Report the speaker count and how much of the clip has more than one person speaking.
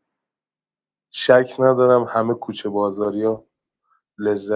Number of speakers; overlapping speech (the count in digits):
1, no overlap